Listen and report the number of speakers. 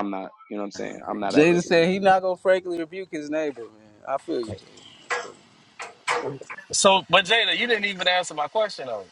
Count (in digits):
3